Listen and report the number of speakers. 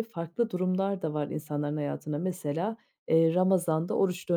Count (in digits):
1